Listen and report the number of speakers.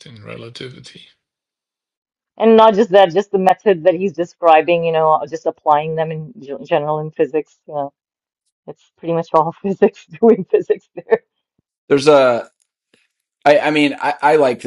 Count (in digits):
3